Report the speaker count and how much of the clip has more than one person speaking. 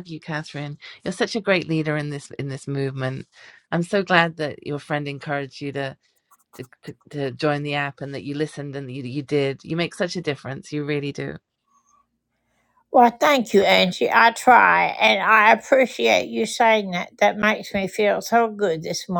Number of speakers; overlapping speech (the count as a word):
two, no overlap